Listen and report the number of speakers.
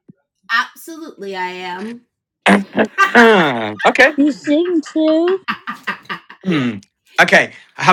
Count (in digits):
3